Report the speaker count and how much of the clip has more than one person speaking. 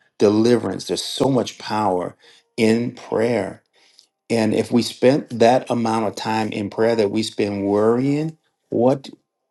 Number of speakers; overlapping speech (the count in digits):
1, no overlap